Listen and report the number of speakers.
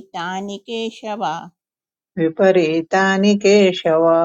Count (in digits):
2